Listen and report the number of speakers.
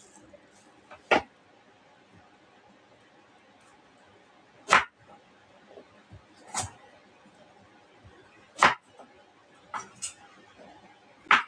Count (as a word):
zero